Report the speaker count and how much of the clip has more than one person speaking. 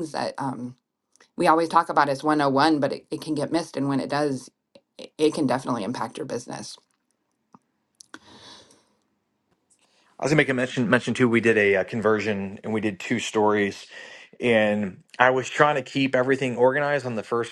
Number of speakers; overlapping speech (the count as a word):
two, no overlap